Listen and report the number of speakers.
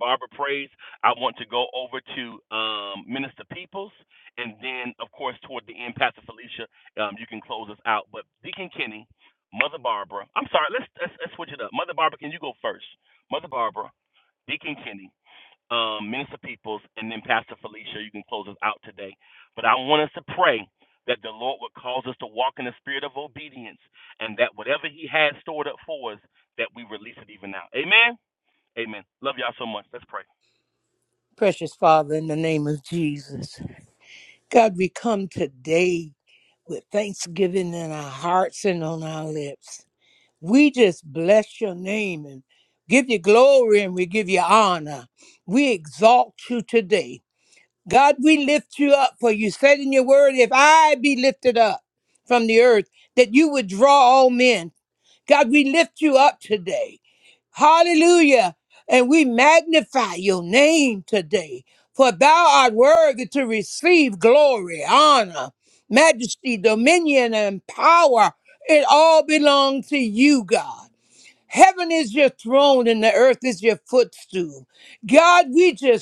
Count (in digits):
2